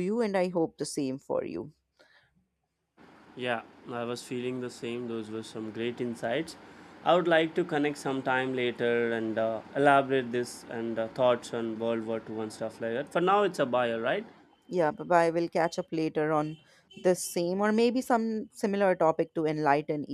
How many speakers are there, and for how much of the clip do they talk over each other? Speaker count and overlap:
two, no overlap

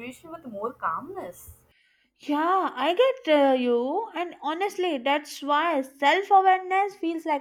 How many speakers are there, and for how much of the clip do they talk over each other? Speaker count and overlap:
two, no overlap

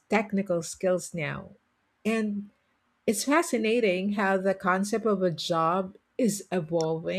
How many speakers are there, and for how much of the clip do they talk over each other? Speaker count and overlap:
one, no overlap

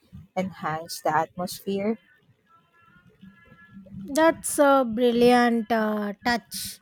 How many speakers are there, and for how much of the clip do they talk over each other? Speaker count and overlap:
two, no overlap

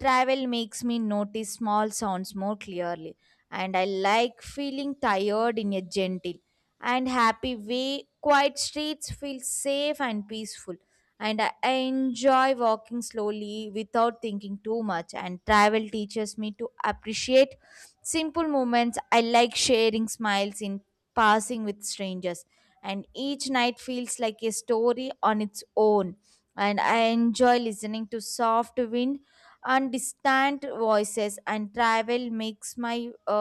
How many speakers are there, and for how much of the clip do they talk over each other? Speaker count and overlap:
one, no overlap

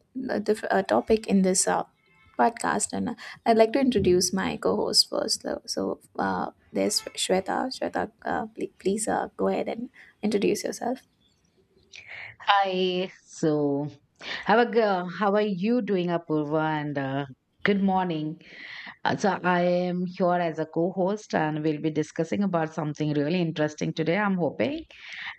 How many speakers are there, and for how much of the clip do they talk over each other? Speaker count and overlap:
two, no overlap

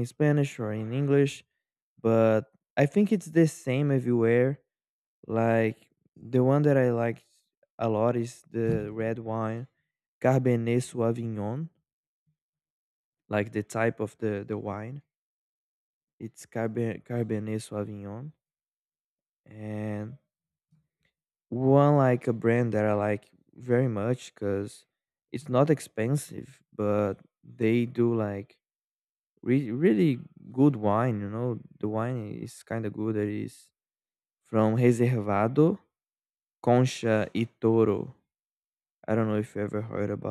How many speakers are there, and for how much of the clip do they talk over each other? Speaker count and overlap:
one, no overlap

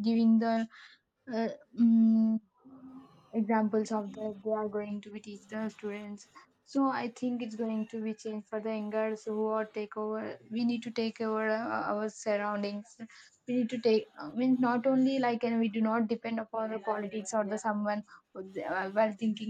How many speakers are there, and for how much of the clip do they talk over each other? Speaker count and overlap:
one, no overlap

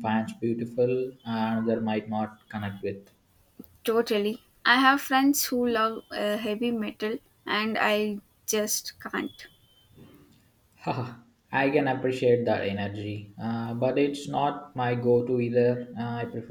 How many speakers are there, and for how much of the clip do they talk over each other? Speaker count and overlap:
two, no overlap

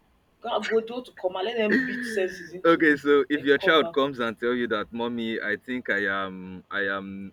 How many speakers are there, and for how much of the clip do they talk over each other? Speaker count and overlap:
two, about 15%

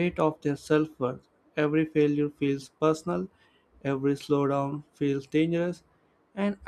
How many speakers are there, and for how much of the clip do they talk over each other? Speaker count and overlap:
one, no overlap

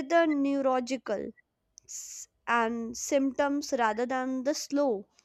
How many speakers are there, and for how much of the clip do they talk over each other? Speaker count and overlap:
one, no overlap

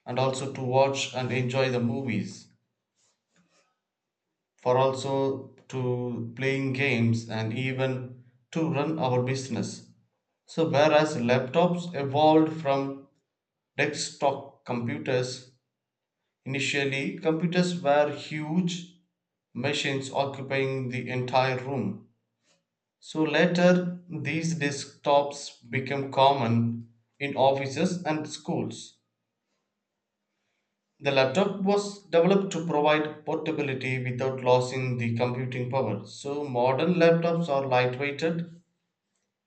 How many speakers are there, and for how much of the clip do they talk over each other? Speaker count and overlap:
one, no overlap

